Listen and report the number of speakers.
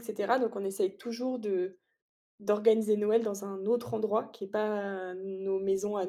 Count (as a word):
one